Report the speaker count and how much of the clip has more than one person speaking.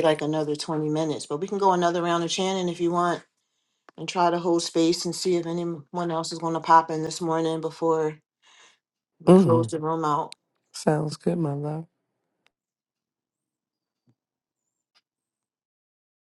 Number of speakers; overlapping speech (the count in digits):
2, about 3%